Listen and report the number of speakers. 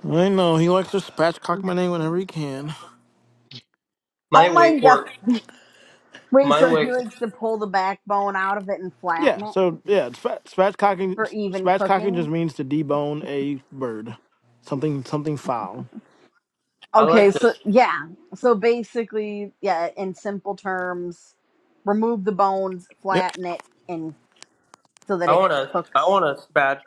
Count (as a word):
three